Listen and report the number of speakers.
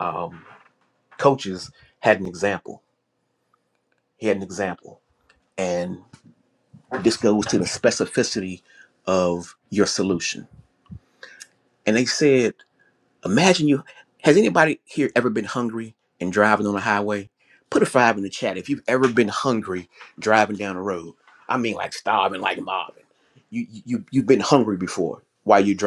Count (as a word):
one